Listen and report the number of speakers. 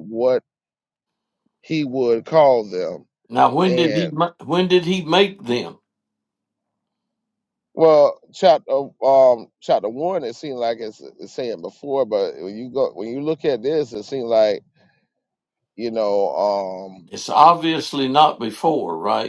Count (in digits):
2